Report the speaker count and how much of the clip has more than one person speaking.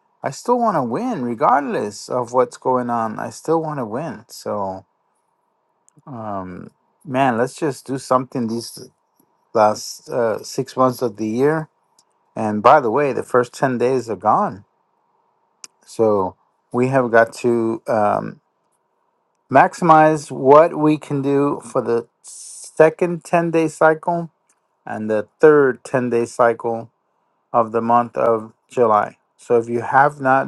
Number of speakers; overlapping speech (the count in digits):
1, no overlap